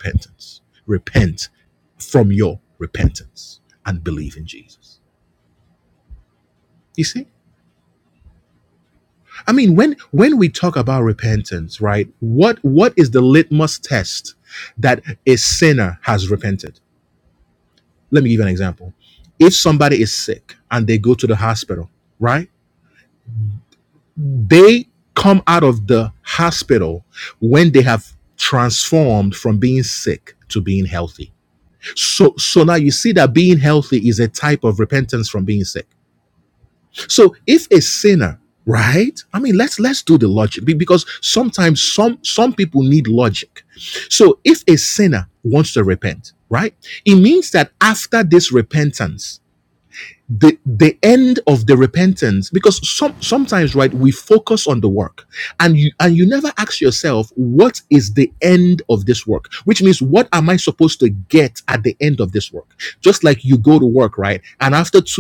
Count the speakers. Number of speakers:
1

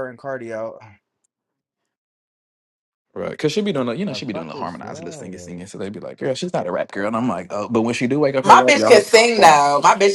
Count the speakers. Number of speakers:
3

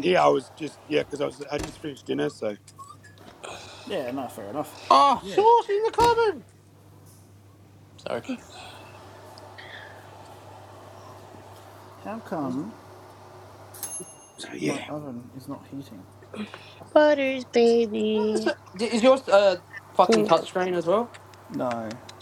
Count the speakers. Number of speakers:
4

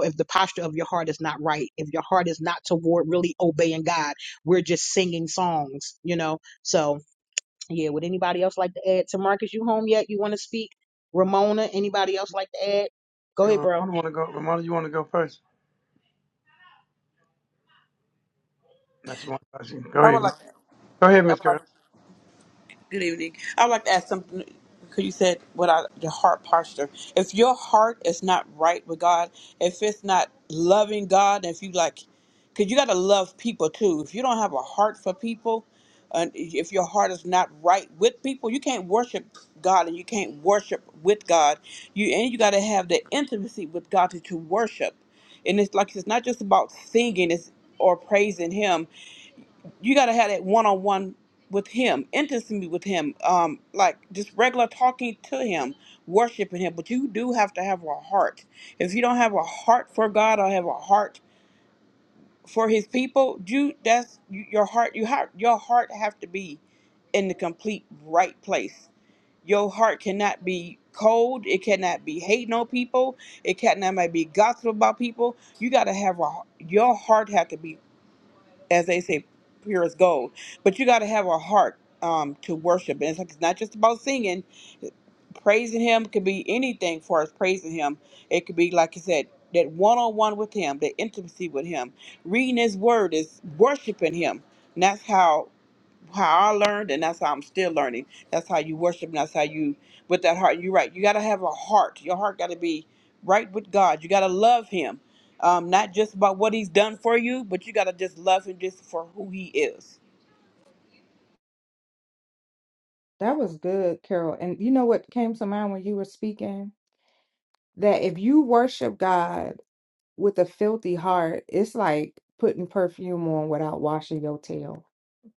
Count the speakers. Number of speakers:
4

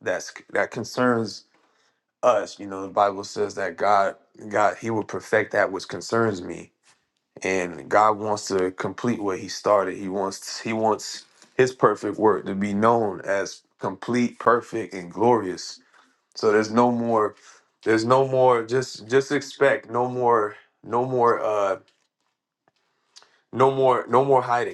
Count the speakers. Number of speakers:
1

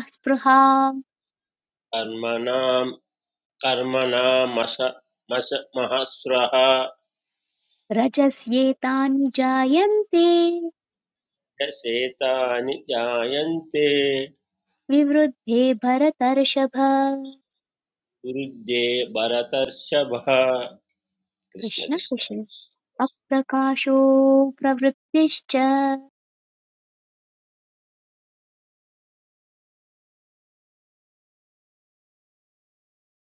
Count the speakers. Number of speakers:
2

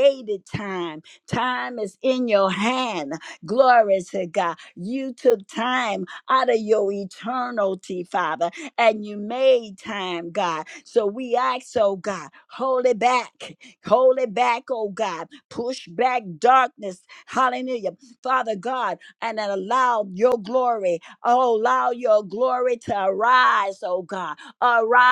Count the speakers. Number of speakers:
1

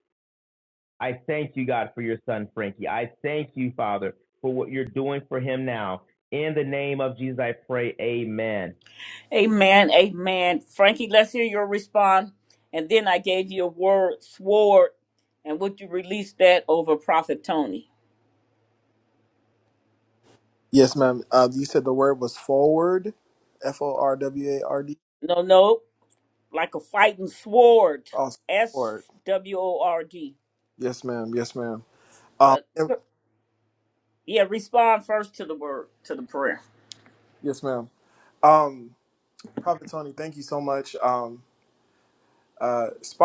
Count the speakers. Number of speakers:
3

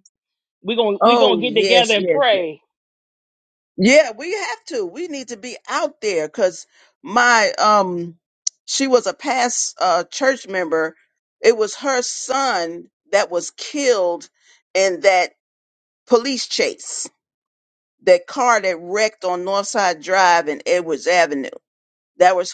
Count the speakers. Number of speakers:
2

